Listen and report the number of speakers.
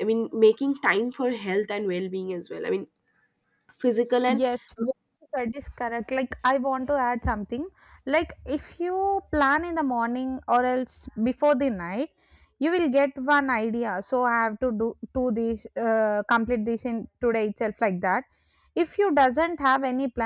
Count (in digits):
2